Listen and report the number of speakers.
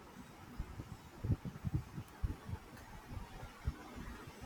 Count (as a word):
zero